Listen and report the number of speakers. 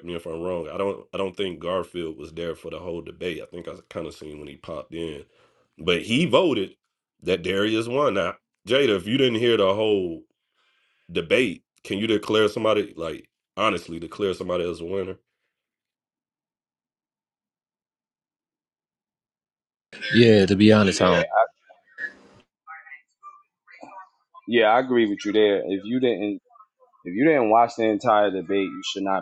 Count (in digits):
3